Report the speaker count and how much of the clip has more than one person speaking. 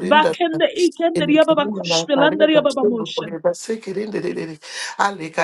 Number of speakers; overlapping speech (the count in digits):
2, about 45%